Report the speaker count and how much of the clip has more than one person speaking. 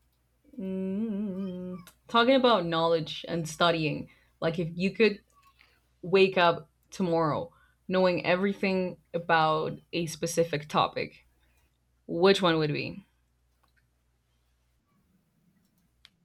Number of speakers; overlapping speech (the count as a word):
one, no overlap